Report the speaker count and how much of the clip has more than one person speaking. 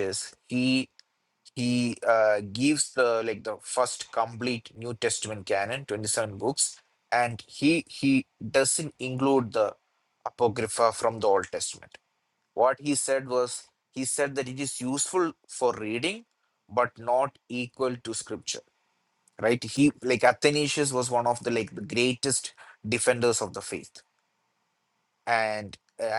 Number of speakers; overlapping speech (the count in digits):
1, no overlap